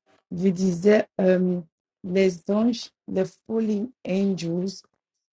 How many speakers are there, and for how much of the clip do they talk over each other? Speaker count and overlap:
1, no overlap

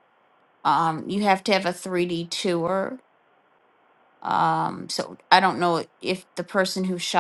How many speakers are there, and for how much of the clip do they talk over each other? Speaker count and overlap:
1, no overlap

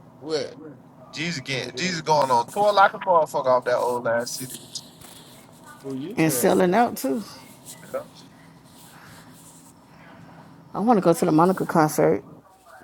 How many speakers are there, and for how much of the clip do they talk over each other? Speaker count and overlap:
3, about 5%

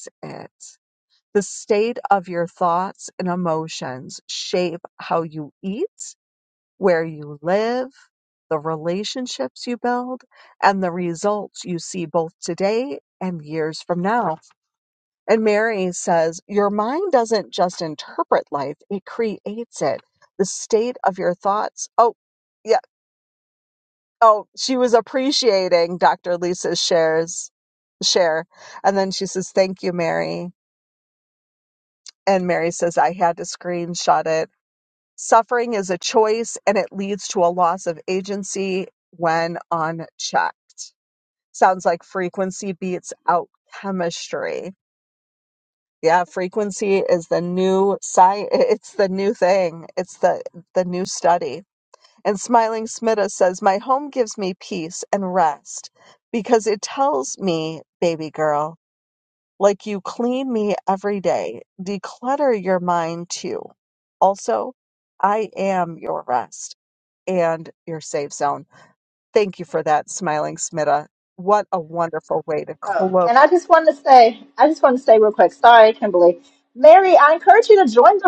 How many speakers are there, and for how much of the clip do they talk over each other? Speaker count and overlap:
2, about 1%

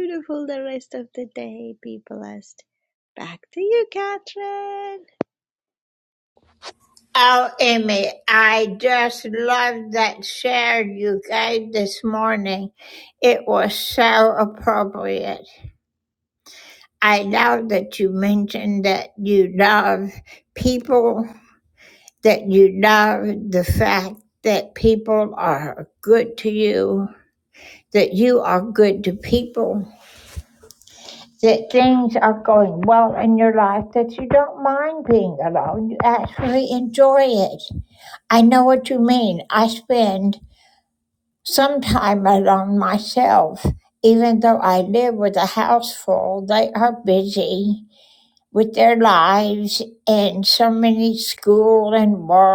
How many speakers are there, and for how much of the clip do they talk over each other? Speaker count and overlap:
2, no overlap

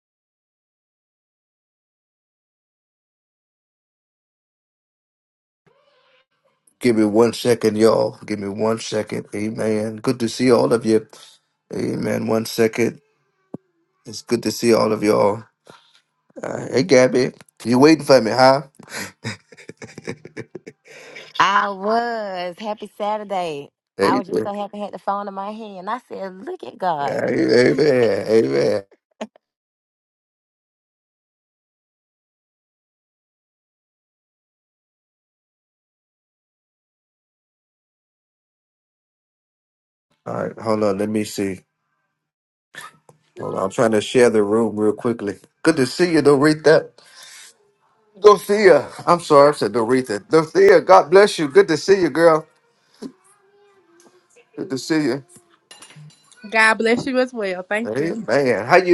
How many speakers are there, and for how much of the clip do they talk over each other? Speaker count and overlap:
3, about 2%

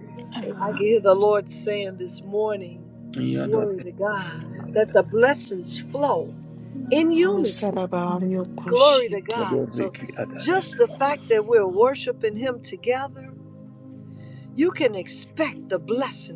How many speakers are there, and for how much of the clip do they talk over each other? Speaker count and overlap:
3, about 16%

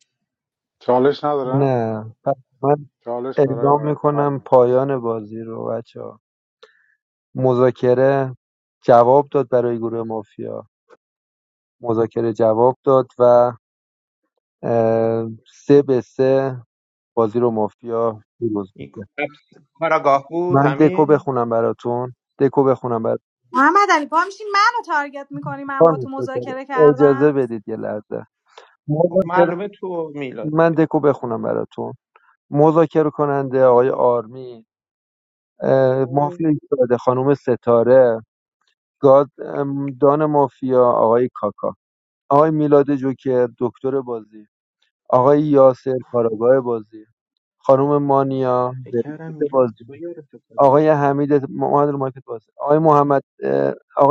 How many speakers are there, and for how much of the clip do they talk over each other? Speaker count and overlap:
4, about 10%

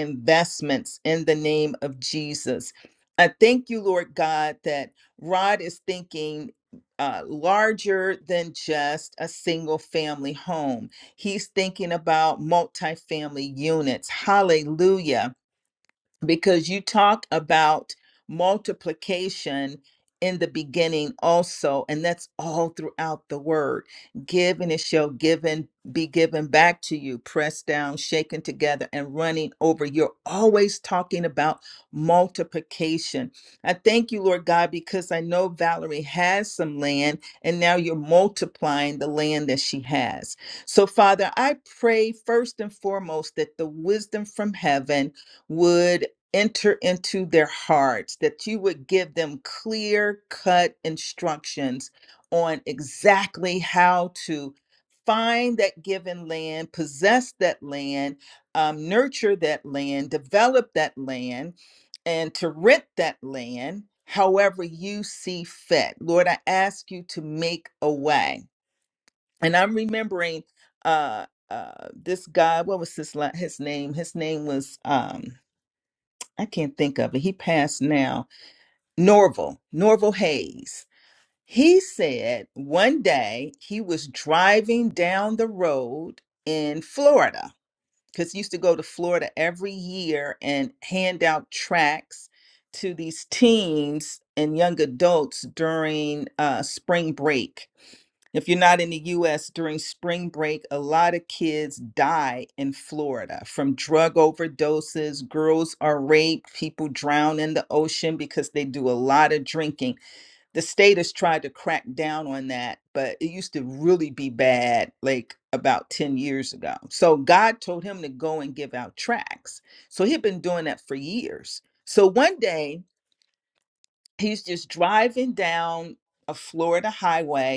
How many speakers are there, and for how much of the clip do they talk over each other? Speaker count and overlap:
1, no overlap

